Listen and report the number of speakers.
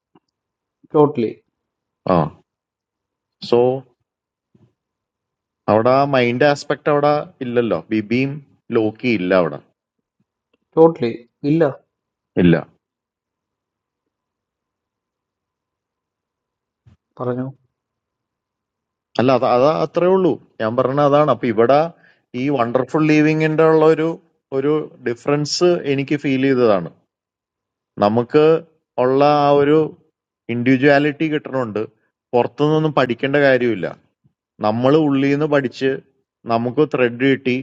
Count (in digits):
2